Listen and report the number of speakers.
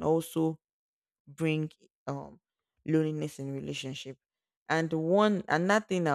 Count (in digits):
1